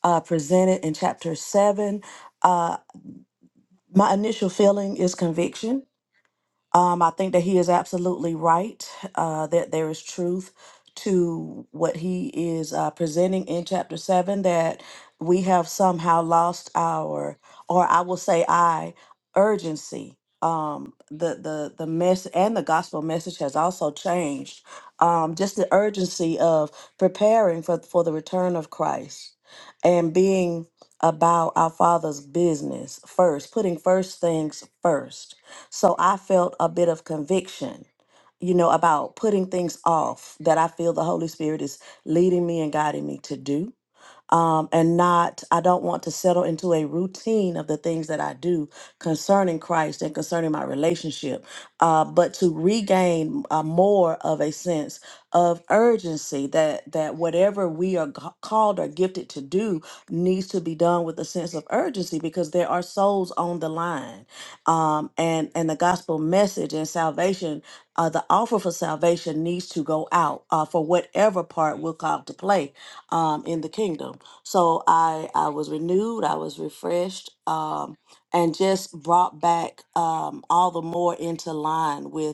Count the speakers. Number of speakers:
1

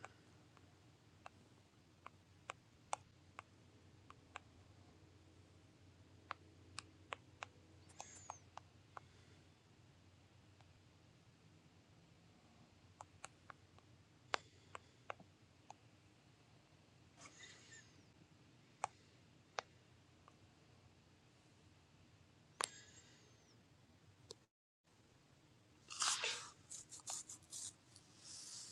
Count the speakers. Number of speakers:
0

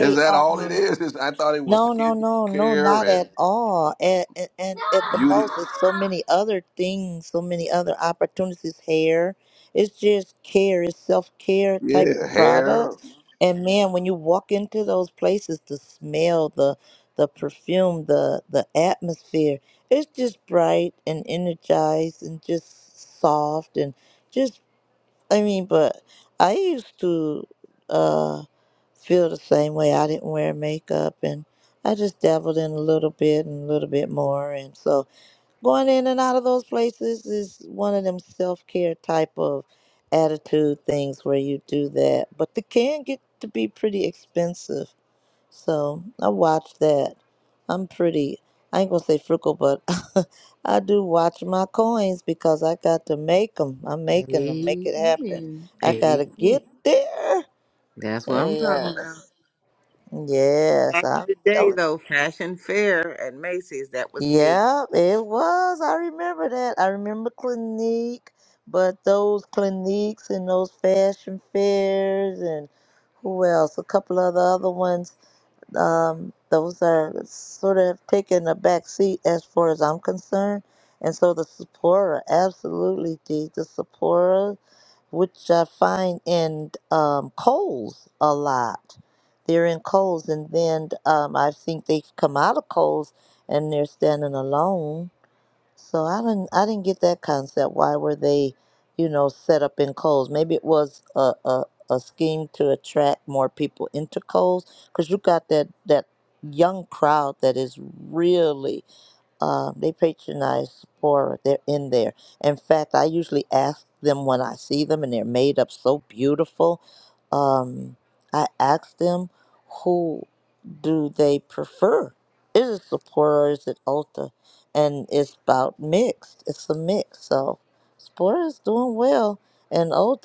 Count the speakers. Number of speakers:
3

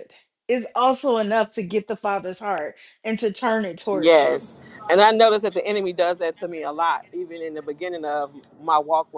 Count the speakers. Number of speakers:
2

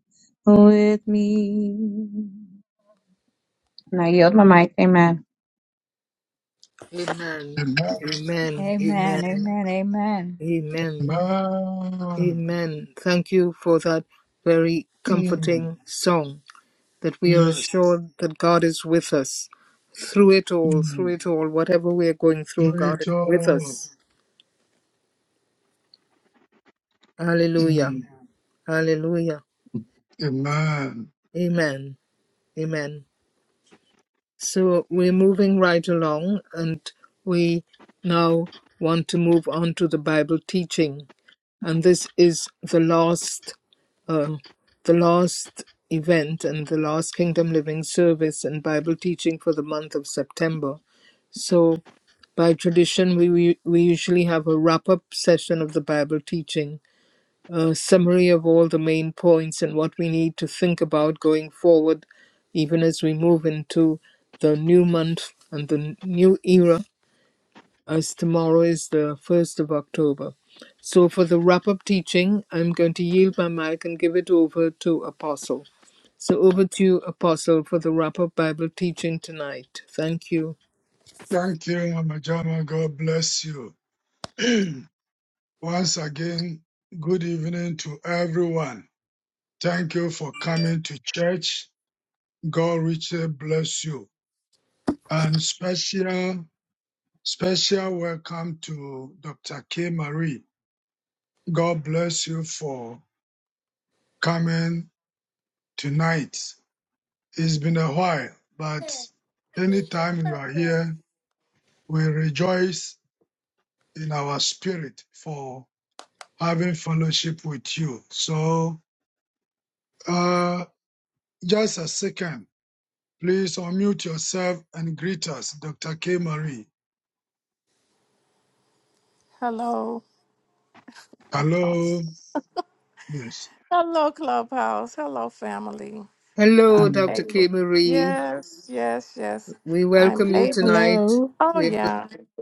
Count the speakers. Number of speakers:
5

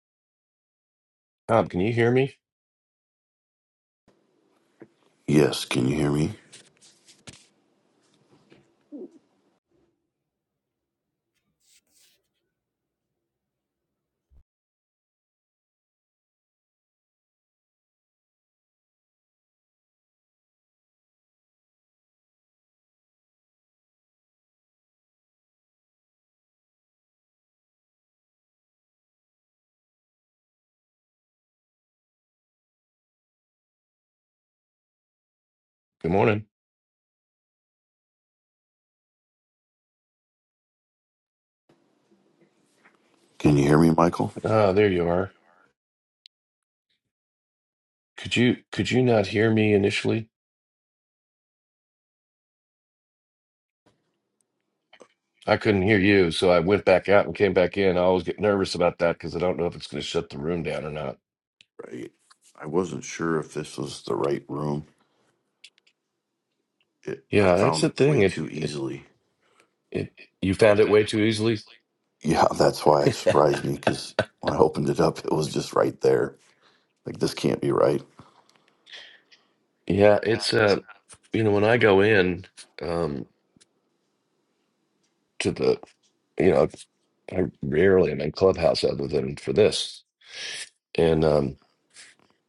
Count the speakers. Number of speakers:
2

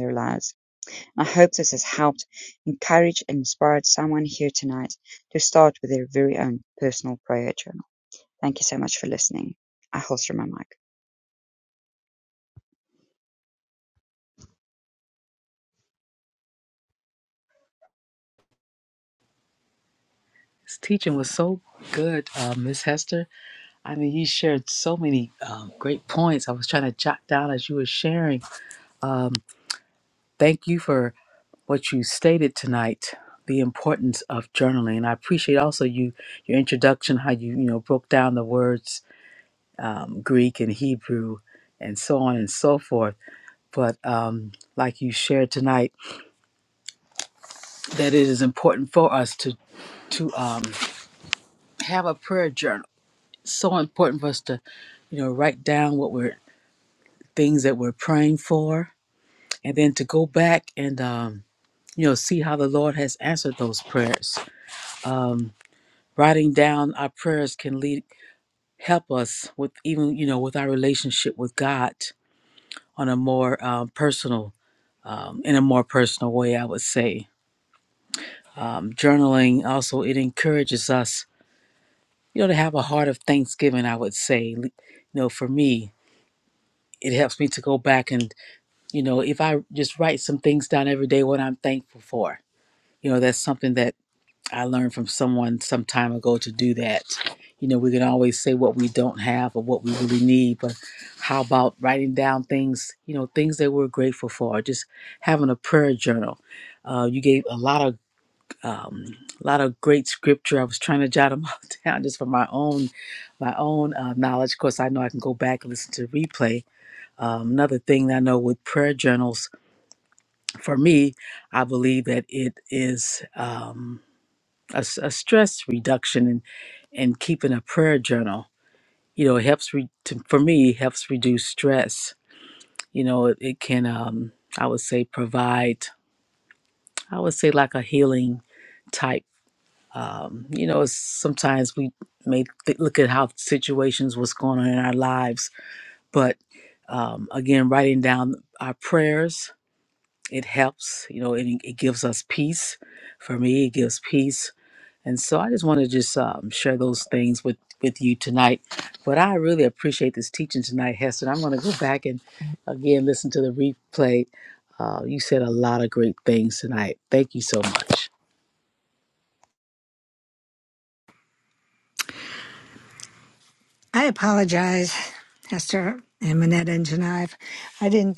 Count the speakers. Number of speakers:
3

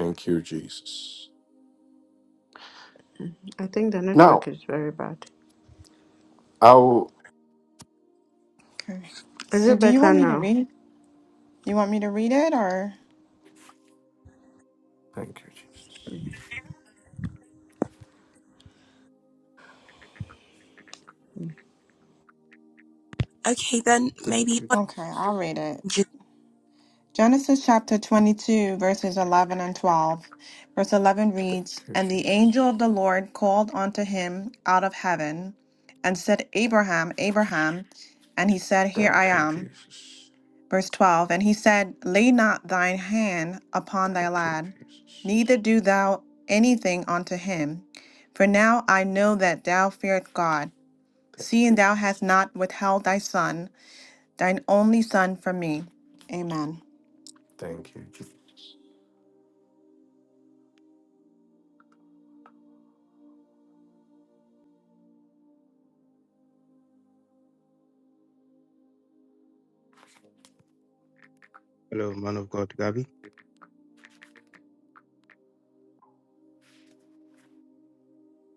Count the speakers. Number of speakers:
5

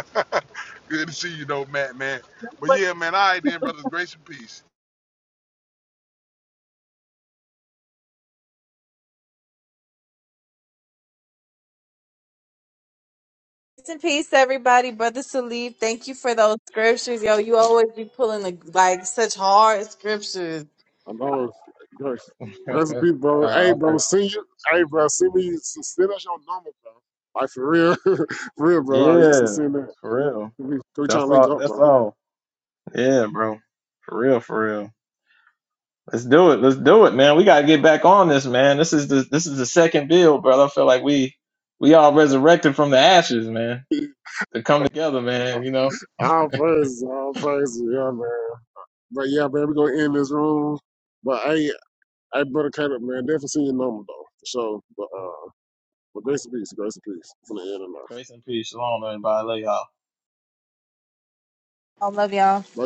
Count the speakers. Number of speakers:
4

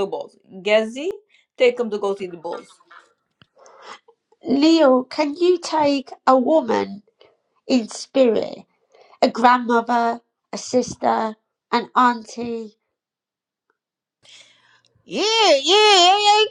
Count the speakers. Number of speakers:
3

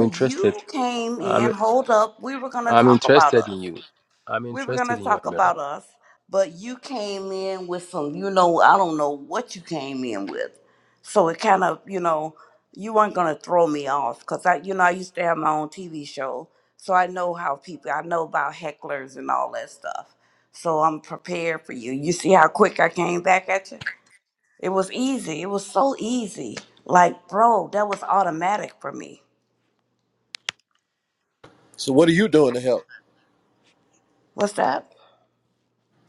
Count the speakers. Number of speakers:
3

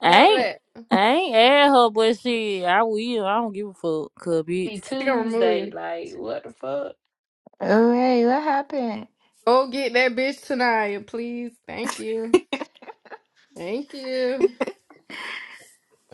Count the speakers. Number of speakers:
4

